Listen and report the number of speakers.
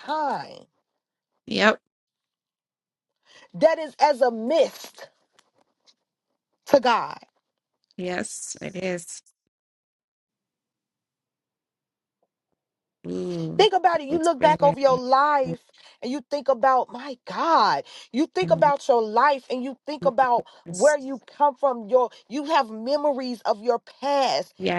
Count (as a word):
two